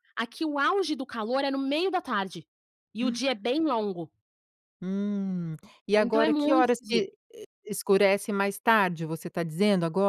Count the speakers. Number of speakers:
two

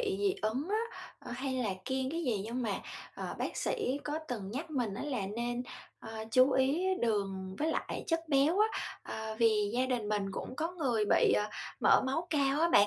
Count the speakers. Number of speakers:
one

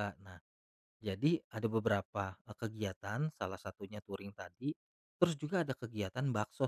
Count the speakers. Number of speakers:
one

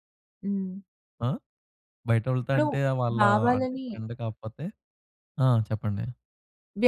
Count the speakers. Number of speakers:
two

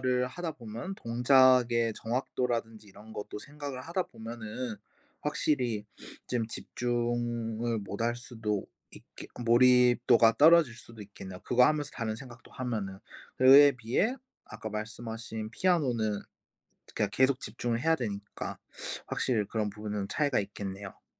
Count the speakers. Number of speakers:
one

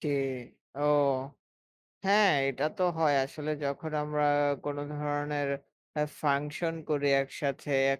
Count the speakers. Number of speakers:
one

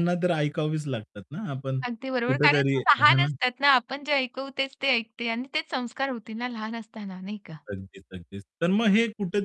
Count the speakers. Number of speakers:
two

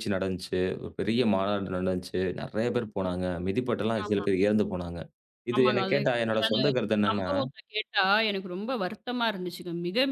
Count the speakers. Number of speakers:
two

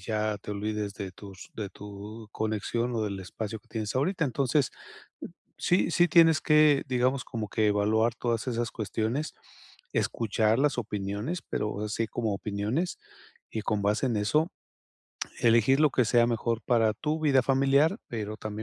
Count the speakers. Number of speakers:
one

